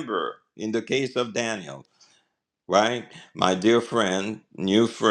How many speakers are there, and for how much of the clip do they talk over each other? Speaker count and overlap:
1, no overlap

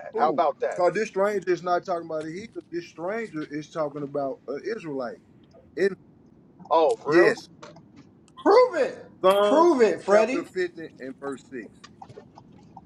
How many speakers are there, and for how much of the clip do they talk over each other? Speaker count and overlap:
3, about 10%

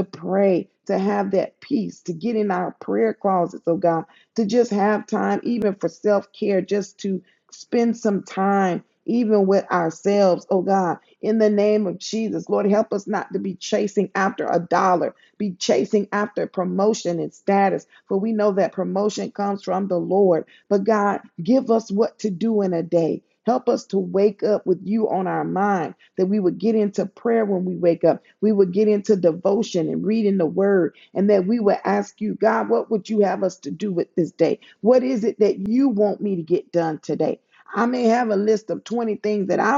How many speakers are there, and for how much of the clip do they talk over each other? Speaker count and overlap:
1, no overlap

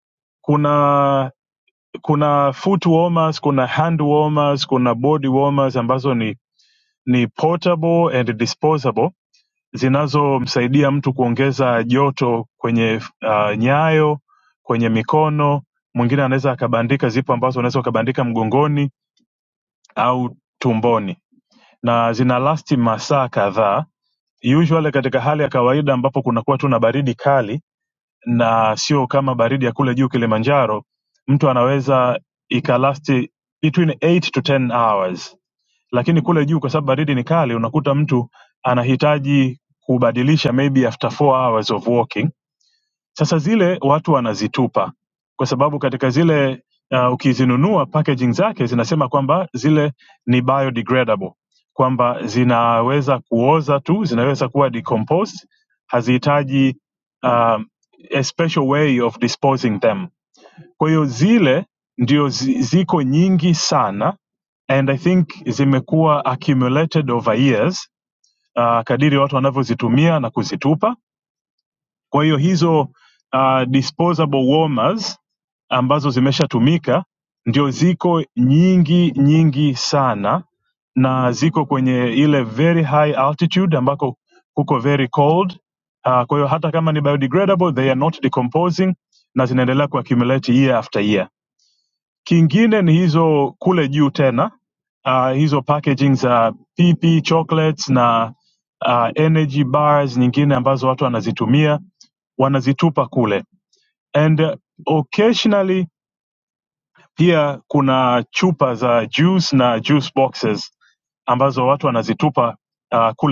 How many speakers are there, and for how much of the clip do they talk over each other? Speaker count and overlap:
1, no overlap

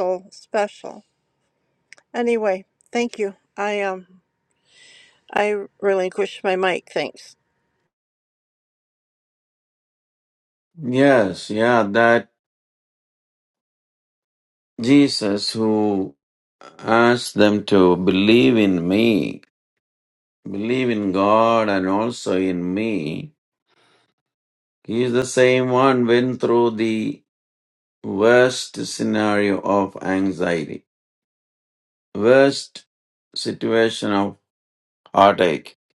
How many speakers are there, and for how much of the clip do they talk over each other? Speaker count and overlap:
2, no overlap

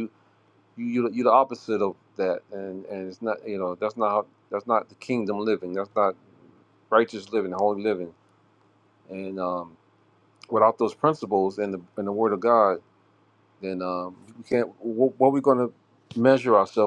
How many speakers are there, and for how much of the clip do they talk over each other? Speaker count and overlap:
1, no overlap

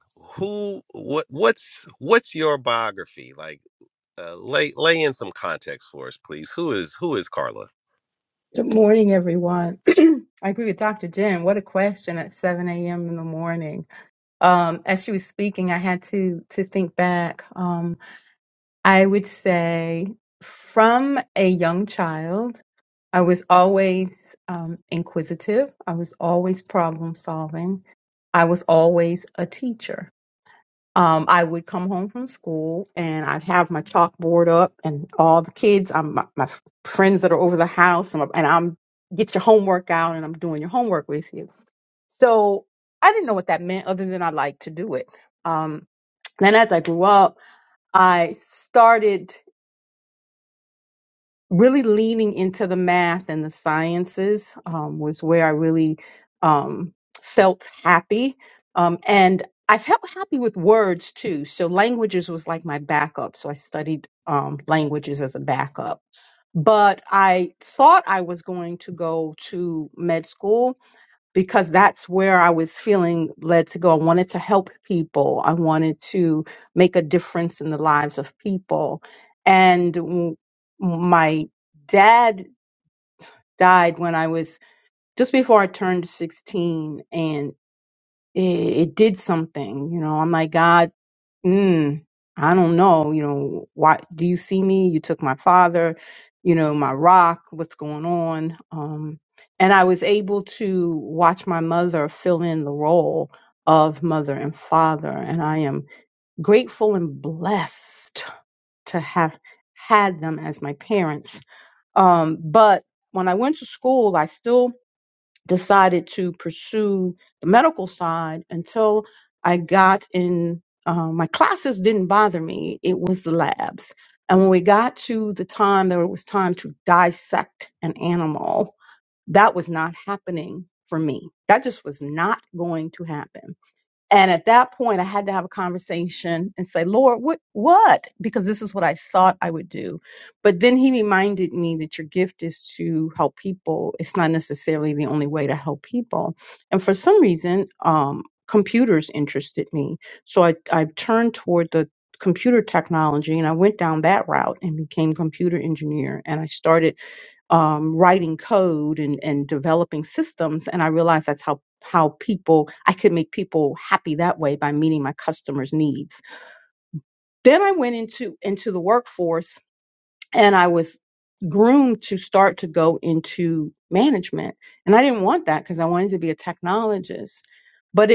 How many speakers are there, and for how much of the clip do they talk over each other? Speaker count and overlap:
2, no overlap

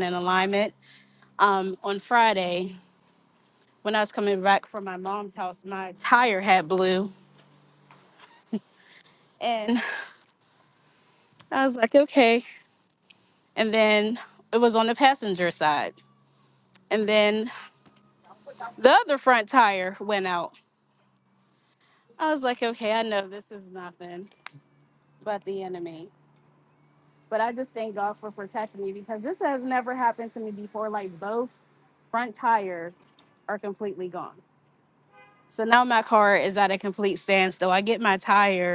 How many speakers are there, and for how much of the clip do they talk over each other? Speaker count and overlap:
1, no overlap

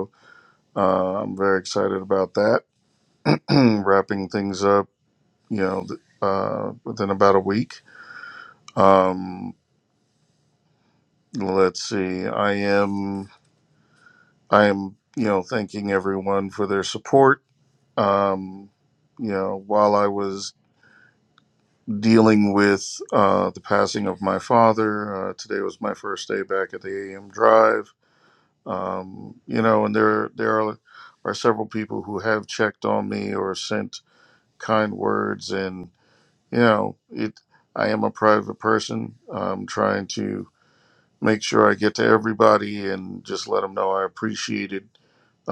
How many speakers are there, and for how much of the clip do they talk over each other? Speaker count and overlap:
1, no overlap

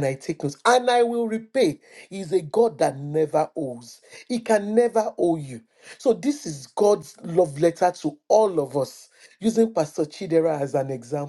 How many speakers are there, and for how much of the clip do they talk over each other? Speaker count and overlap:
1, no overlap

